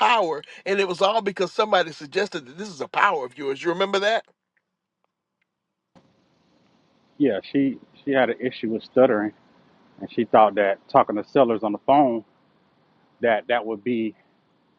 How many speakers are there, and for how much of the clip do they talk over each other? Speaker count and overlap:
2, no overlap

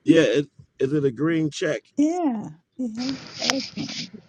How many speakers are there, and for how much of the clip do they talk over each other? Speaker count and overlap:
2, no overlap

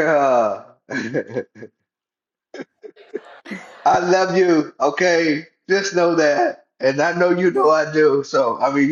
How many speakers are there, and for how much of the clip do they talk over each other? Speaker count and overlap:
1, no overlap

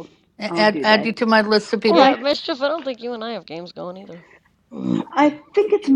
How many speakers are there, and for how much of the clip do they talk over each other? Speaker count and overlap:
3, about 16%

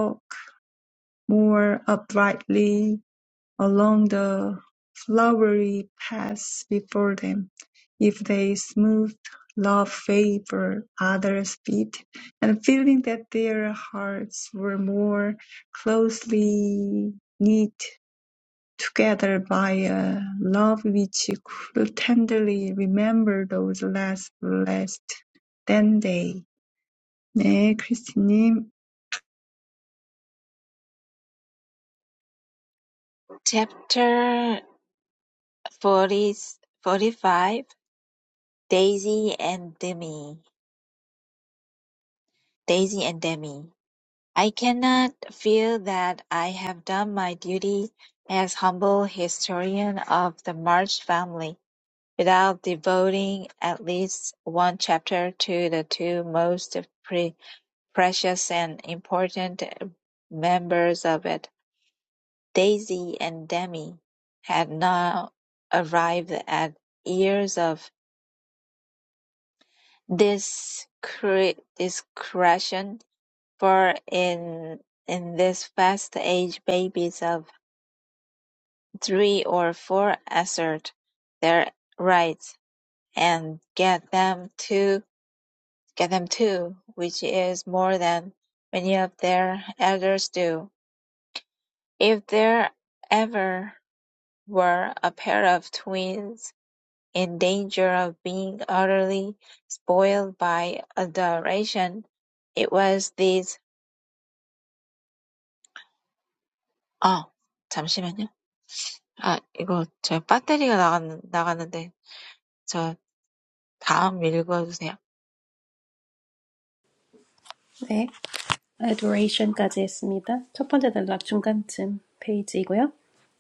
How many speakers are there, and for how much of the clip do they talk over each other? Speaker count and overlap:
3, no overlap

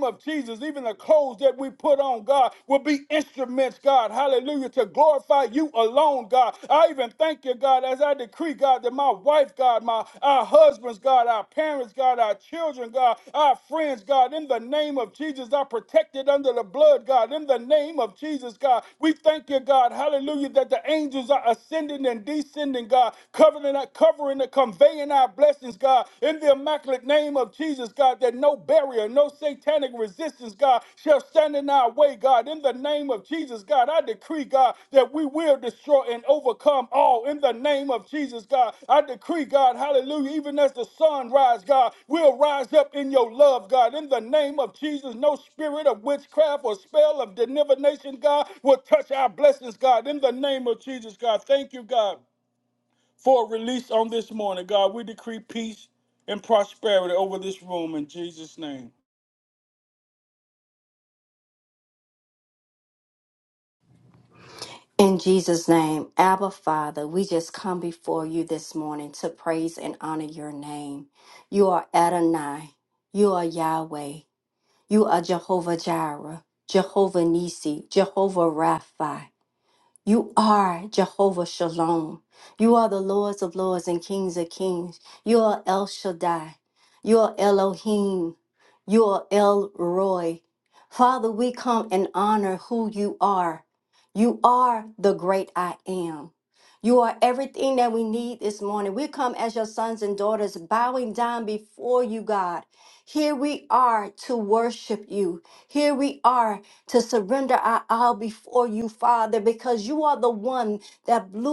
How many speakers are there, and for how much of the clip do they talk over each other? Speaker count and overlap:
2, no overlap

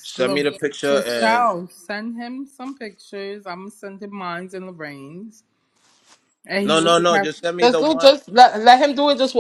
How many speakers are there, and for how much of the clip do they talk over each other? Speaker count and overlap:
3, about 21%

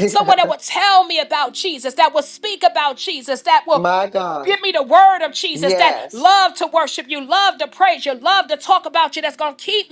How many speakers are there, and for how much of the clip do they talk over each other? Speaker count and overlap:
2, about 7%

